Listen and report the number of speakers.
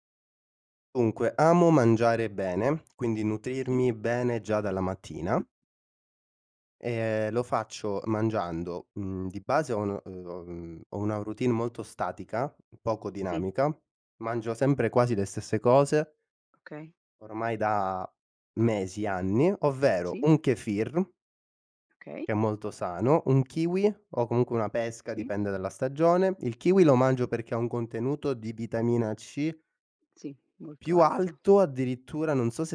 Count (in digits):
2